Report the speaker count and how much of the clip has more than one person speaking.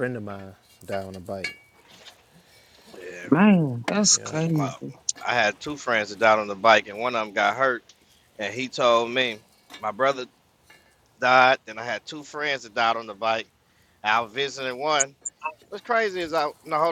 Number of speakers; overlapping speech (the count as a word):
three, about 2%